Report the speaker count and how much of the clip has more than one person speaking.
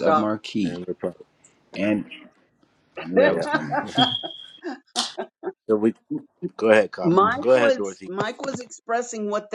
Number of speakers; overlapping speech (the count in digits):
3, about 16%